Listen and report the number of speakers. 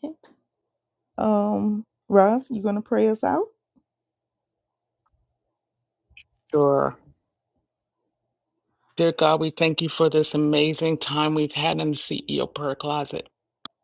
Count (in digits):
2